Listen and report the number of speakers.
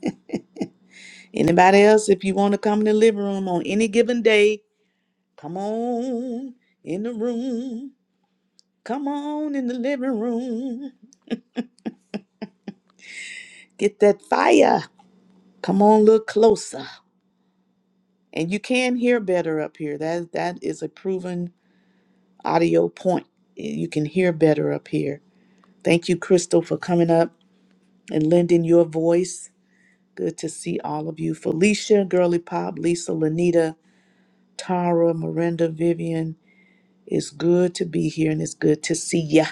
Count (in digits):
1